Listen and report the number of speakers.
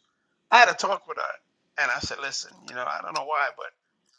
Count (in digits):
1